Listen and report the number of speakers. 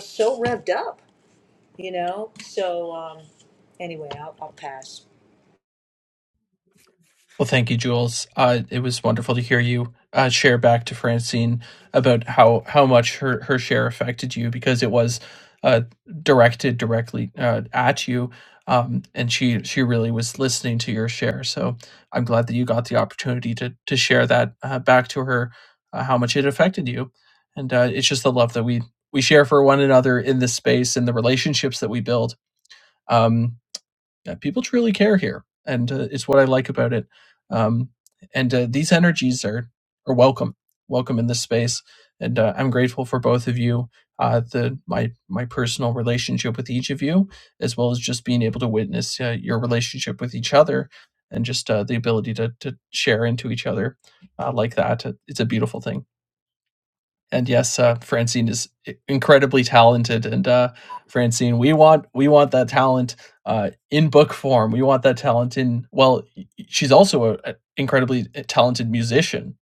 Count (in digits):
2